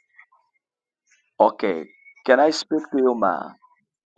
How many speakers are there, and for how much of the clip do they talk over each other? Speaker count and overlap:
one, no overlap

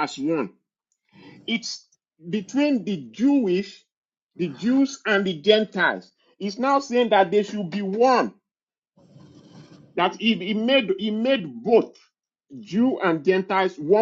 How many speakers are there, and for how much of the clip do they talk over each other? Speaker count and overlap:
one, no overlap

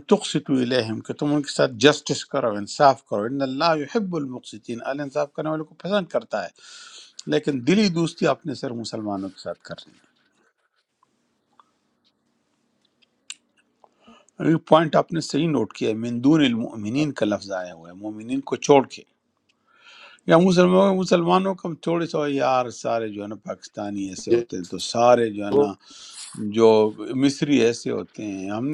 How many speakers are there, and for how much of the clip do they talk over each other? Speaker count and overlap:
one, no overlap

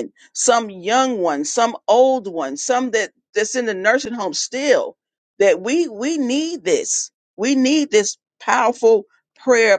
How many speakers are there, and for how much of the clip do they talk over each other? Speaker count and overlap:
one, no overlap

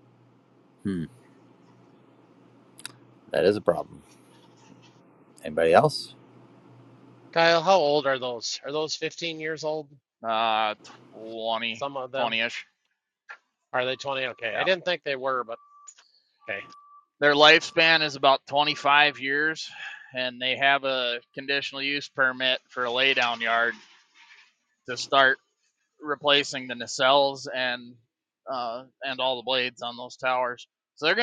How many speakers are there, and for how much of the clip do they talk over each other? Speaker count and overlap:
three, about 1%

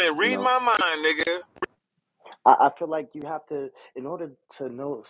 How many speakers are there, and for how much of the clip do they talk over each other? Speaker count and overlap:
two, about 6%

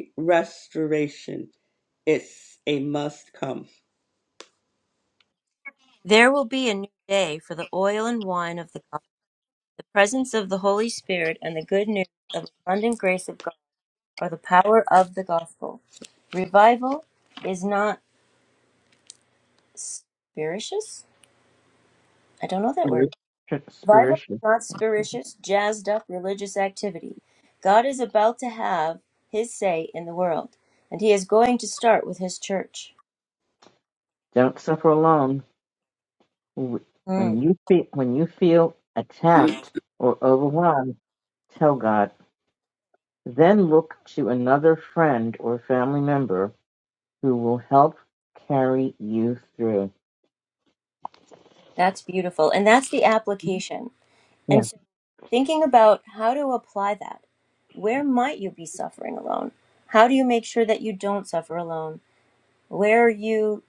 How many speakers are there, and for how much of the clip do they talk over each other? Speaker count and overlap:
three, about 1%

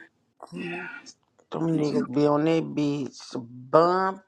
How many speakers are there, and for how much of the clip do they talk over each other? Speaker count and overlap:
one, no overlap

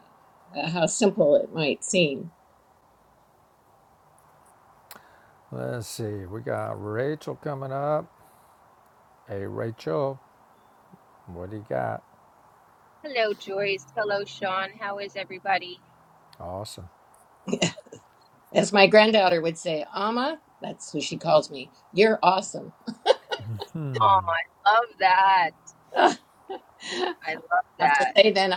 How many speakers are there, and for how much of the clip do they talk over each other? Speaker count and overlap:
three, about 1%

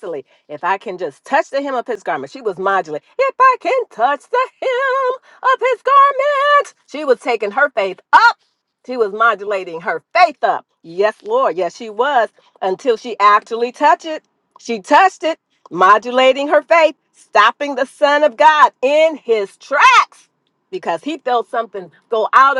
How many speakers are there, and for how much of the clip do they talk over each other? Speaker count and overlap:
one, no overlap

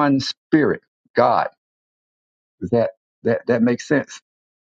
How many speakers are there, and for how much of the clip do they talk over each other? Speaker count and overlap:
one, no overlap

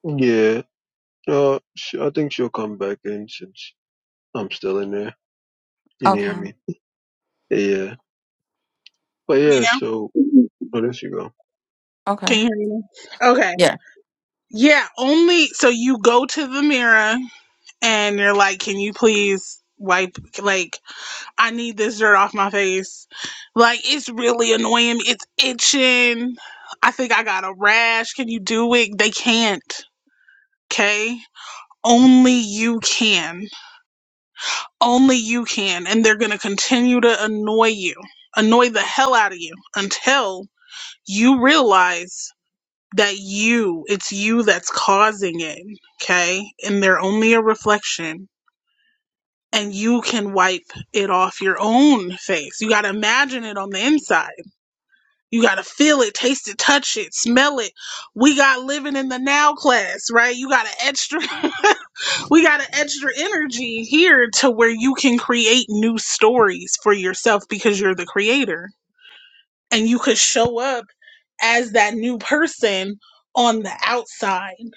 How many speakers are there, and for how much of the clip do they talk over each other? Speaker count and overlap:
two, under 1%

